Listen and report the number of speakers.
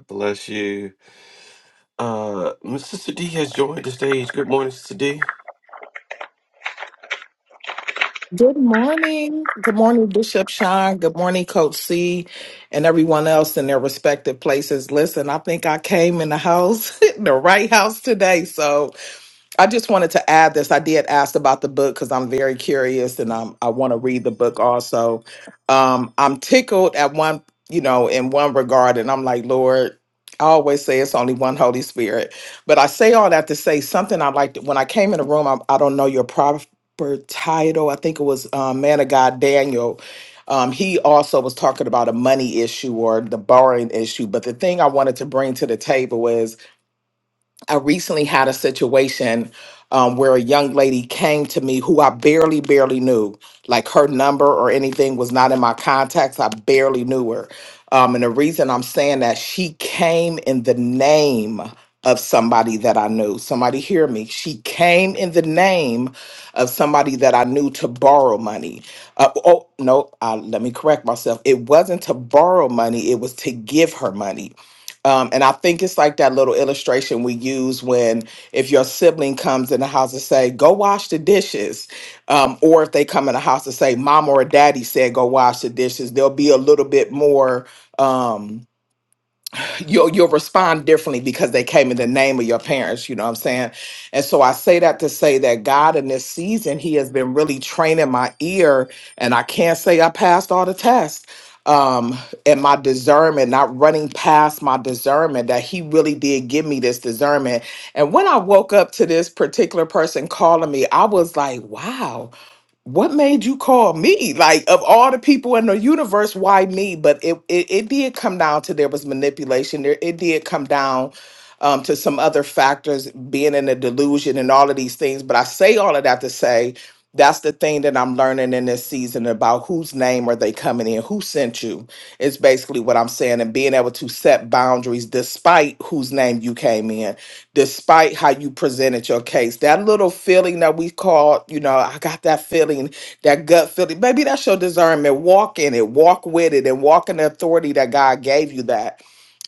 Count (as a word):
two